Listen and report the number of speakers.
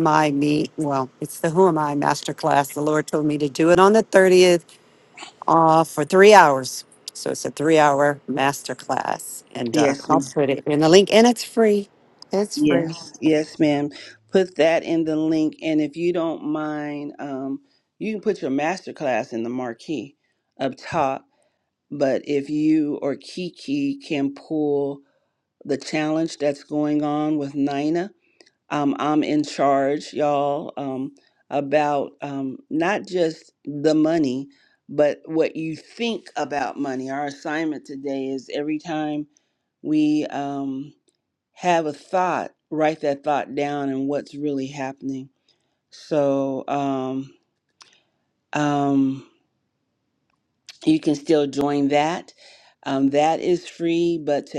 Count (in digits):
2